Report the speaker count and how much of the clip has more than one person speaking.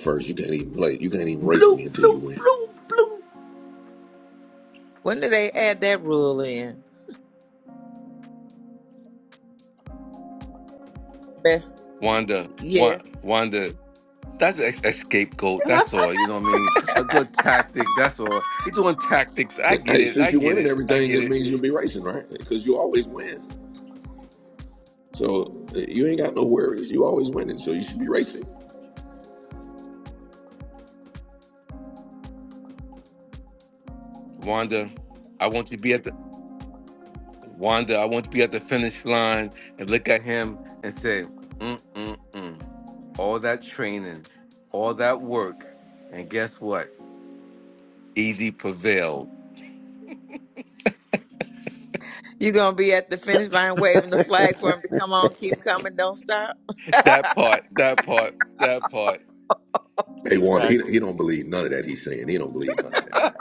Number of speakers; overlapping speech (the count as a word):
four, about 6%